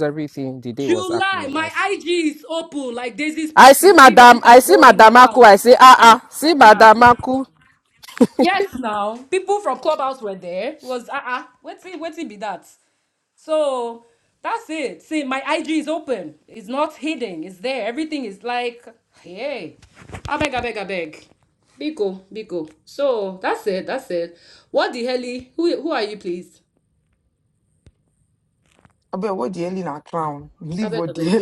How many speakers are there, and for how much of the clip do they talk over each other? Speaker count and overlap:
3, about 10%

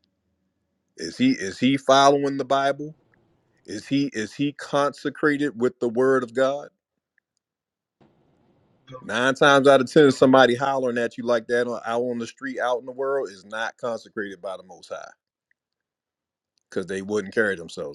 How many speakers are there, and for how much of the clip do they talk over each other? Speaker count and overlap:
1, no overlap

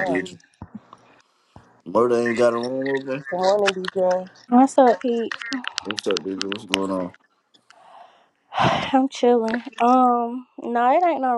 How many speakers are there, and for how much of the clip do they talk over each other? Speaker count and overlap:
3, about 2%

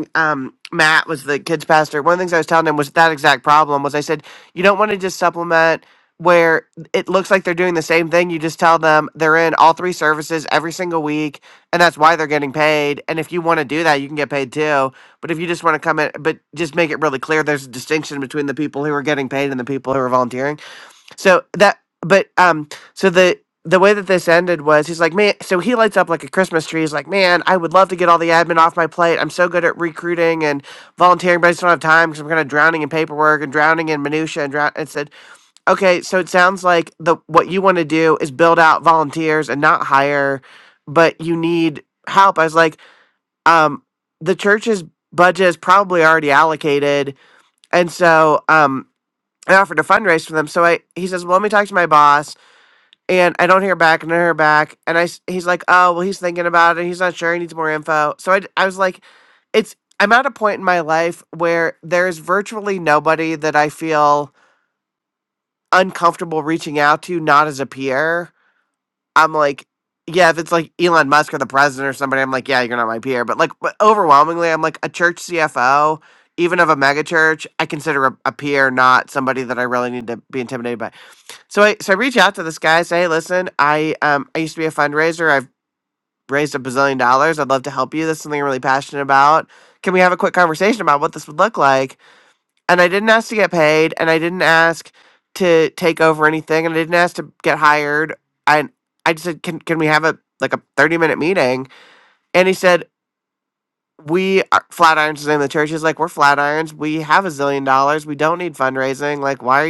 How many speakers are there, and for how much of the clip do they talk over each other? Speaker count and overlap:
1, no overlap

